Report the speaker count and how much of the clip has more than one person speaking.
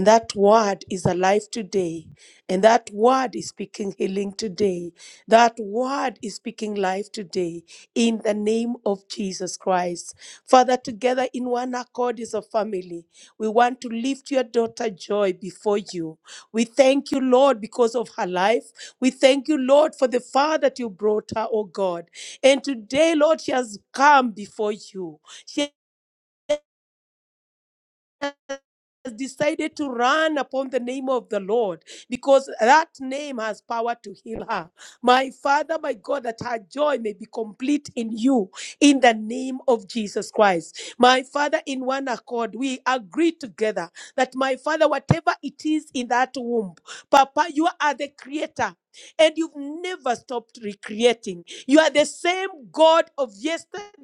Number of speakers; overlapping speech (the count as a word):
one, no overlap